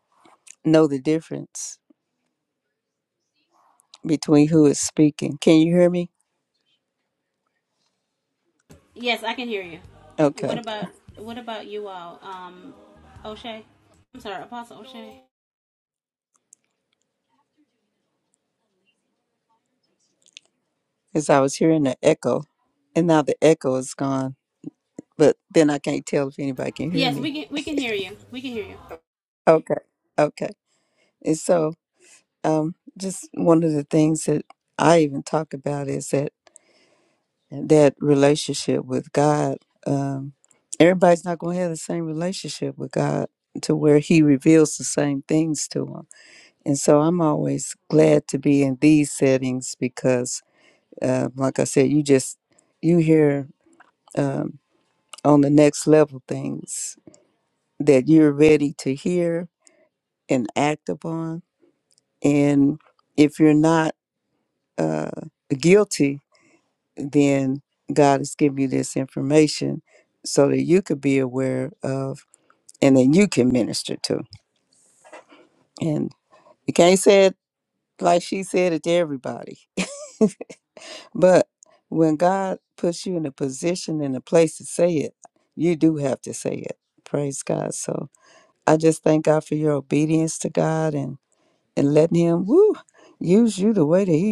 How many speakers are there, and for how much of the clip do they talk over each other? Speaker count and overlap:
2, about 1%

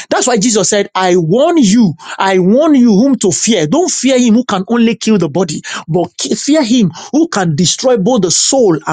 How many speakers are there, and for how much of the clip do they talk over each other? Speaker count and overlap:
1, no overlap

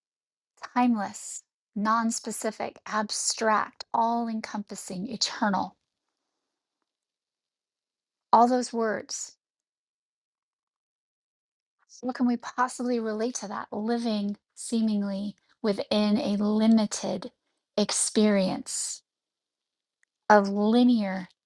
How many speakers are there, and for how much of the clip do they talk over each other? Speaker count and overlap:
1, no overlap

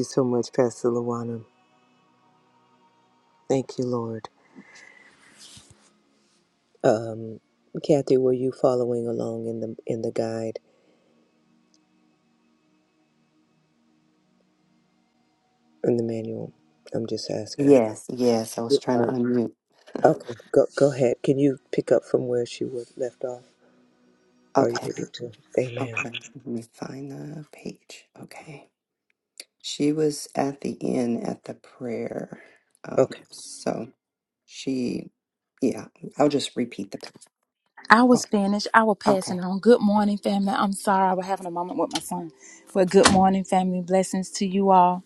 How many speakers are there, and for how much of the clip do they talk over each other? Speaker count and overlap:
3, about 4%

